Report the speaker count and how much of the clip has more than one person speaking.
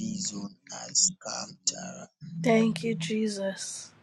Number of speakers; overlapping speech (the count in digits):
2, no overlap